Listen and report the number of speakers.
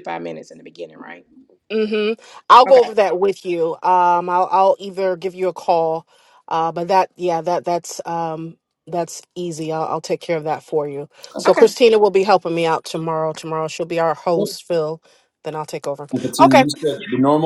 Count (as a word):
three